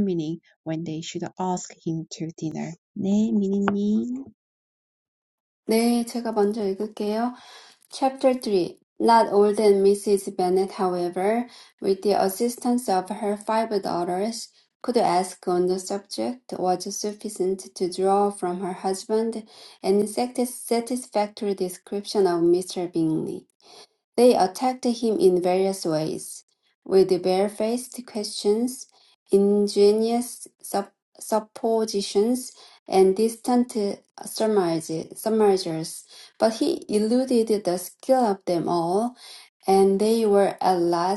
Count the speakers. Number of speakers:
2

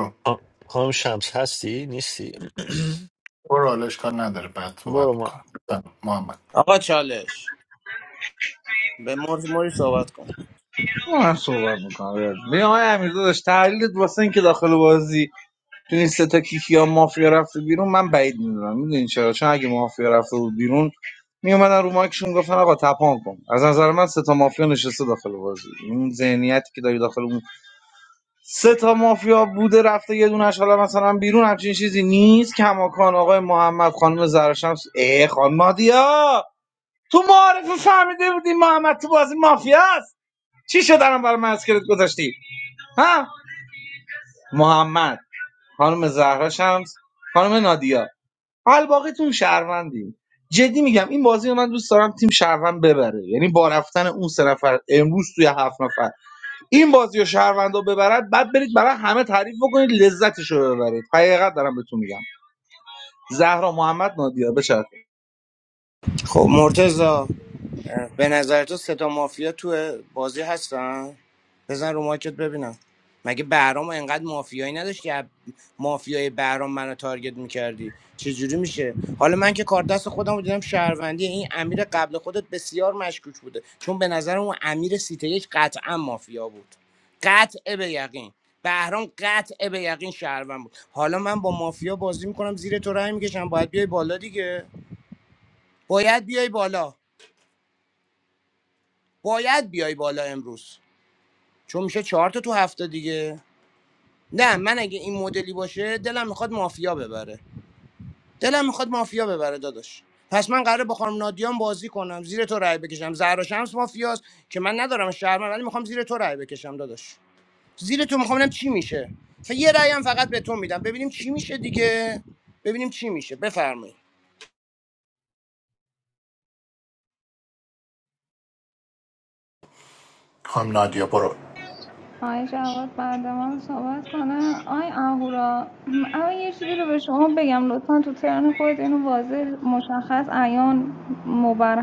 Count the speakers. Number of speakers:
5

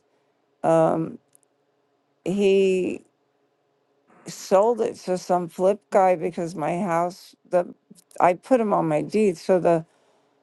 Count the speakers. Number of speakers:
1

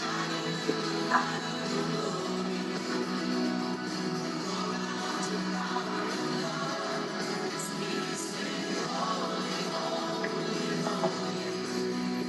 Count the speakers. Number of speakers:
0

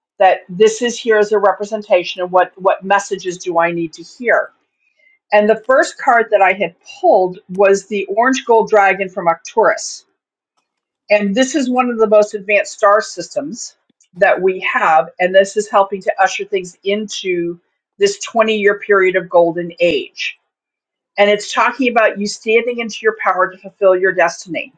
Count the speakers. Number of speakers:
1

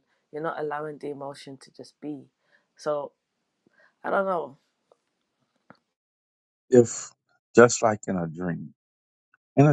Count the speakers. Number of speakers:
2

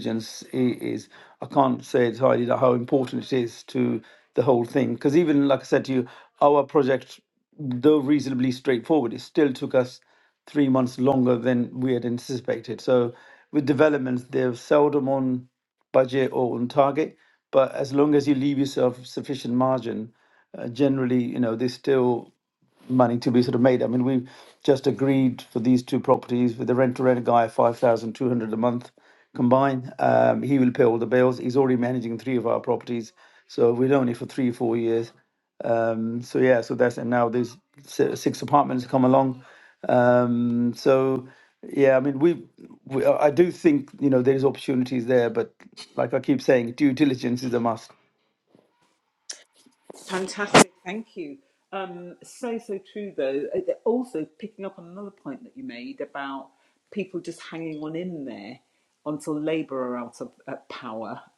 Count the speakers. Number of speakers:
2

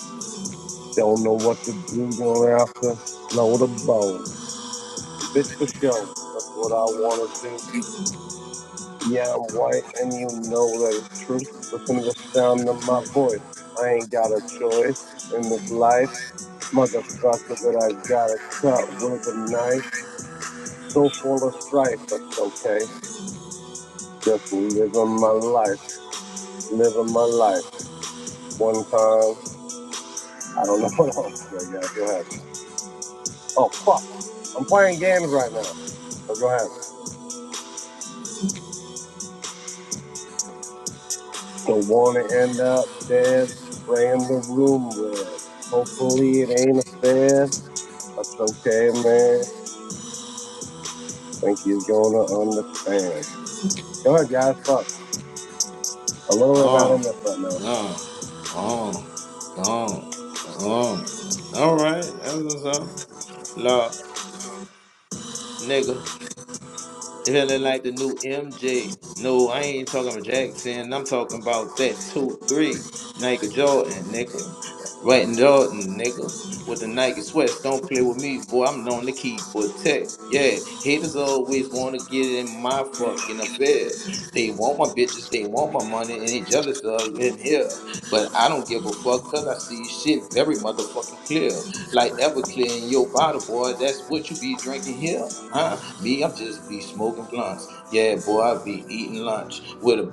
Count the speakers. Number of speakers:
2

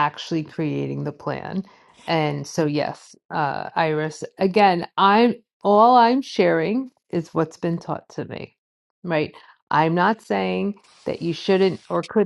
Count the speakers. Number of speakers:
1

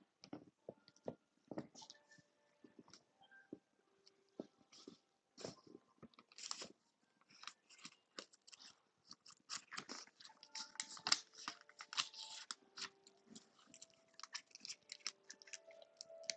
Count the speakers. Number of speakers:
0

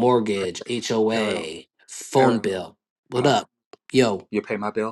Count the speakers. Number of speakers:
2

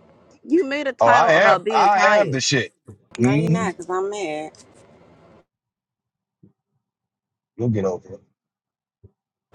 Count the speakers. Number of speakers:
3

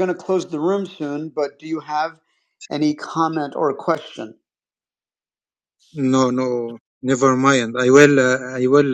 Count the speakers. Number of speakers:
2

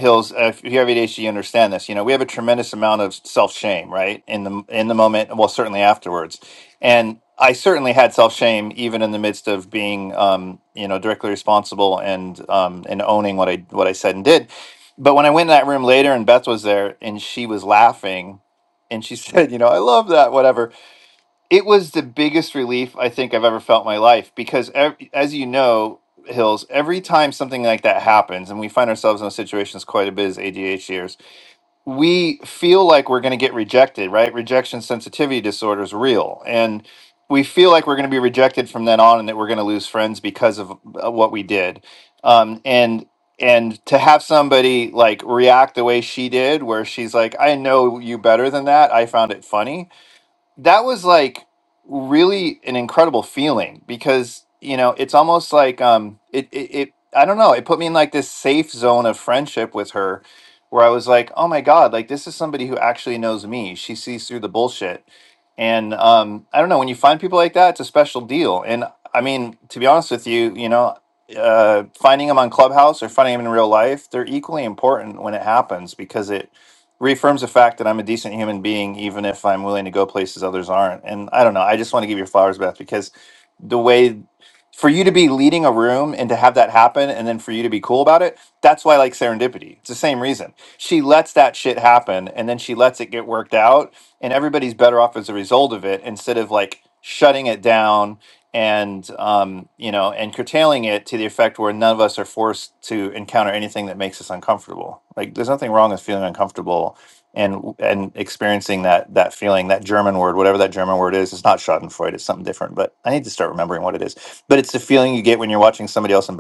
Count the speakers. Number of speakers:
1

